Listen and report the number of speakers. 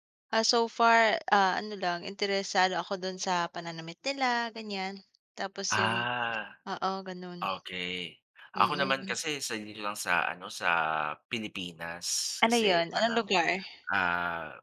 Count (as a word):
two